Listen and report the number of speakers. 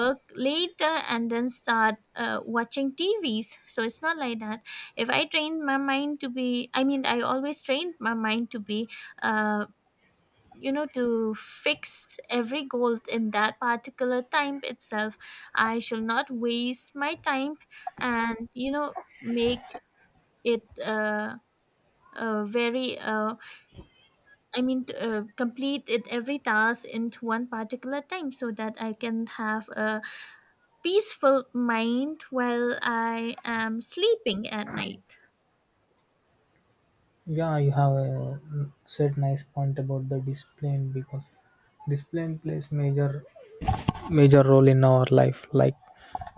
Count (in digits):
2